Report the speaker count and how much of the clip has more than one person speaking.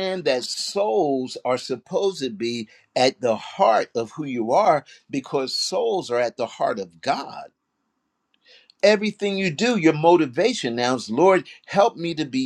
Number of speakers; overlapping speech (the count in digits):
1, no overlap